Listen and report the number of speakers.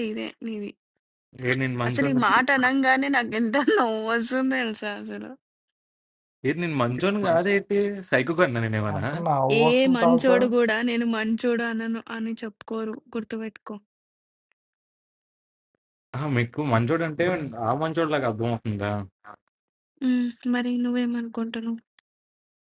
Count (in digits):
3